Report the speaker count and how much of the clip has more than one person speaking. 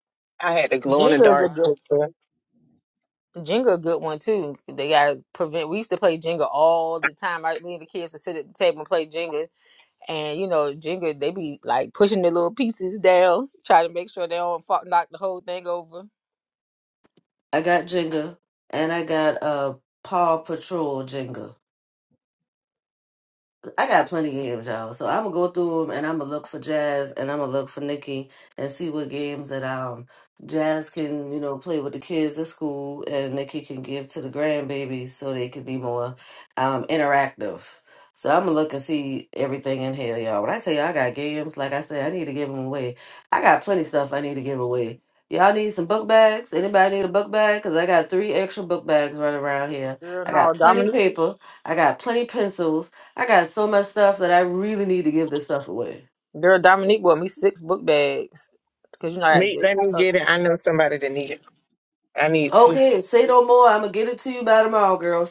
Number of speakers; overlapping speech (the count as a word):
three, about 4%